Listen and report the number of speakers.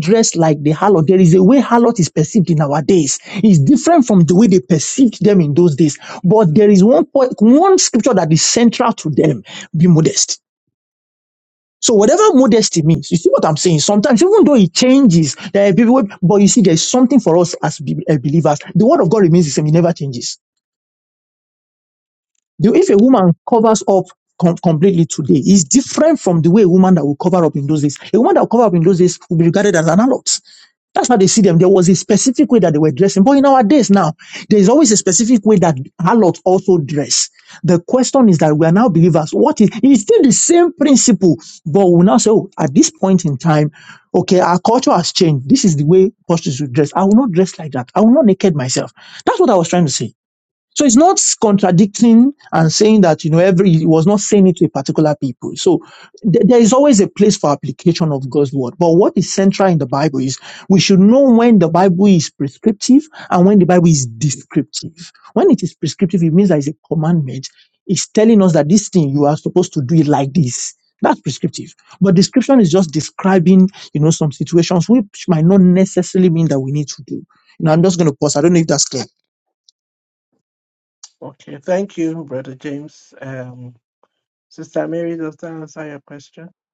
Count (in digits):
2